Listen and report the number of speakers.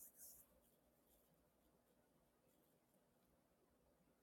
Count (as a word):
zero